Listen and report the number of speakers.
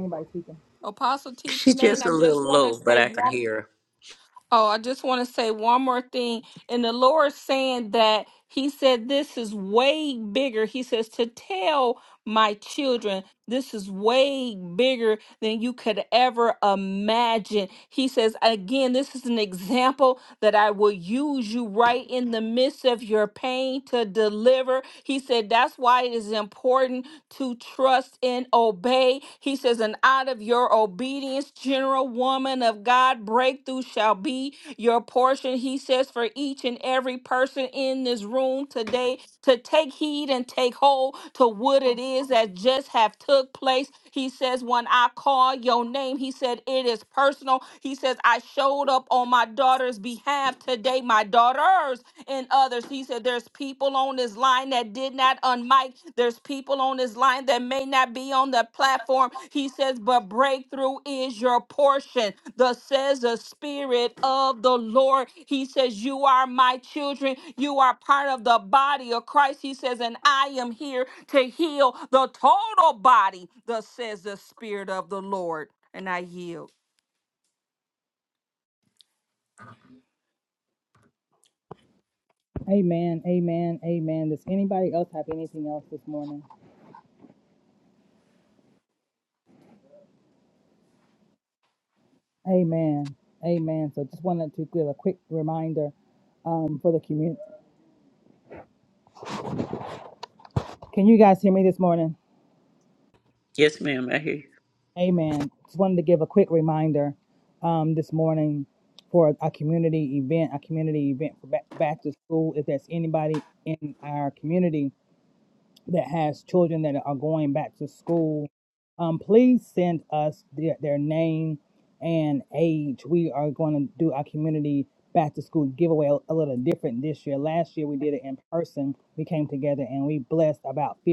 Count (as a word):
three